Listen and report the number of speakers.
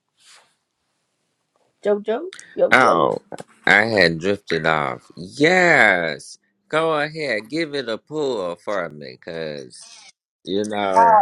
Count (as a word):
two